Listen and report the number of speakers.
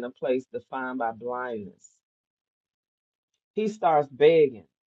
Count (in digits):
1